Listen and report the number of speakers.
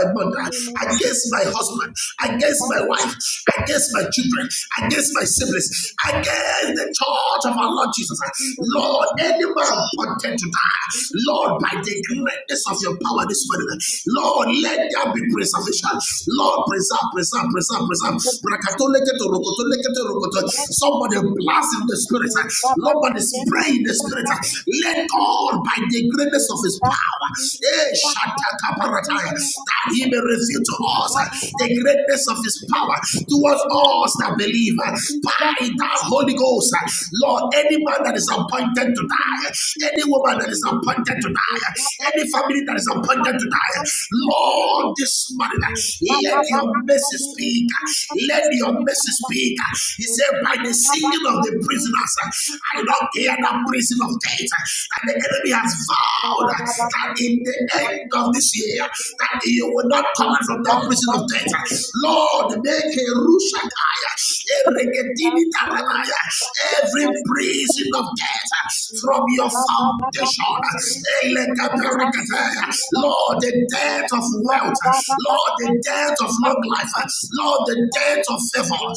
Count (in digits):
1